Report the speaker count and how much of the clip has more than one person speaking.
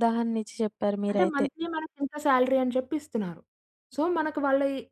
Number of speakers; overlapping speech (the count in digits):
2, about 8%